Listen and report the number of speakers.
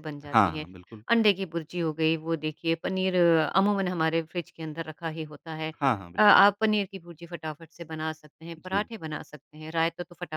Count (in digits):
2